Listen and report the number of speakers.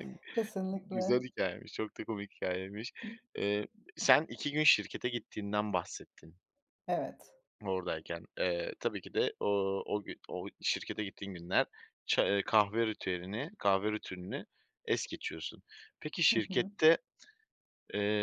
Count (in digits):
2